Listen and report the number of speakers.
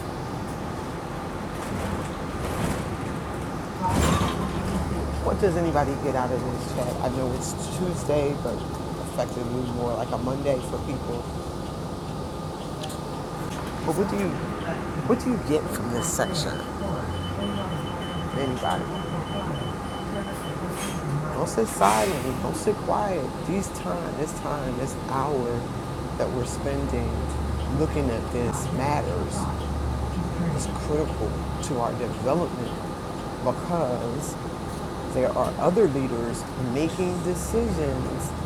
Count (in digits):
1